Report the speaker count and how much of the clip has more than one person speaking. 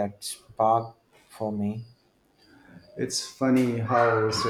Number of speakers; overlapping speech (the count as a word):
two, no overlap